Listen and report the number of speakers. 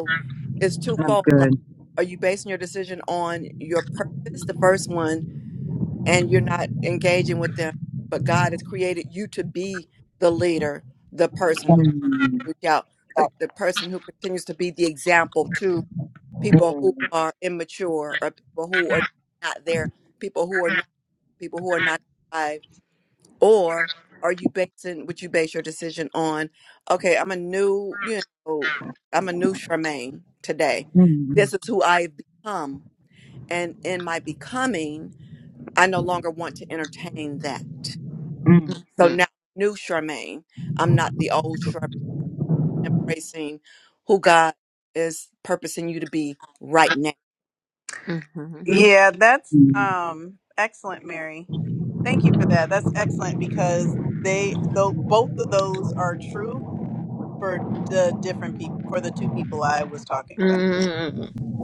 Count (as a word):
four